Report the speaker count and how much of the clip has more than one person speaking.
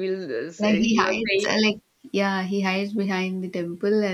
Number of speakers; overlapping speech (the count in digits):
2, about 23%